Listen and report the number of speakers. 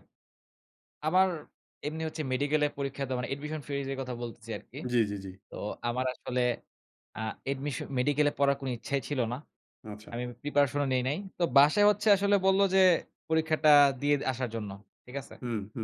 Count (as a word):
two